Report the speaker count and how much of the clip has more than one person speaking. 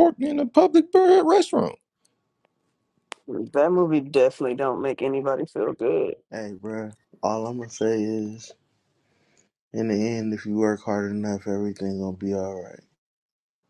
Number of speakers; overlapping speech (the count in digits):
3, no overlap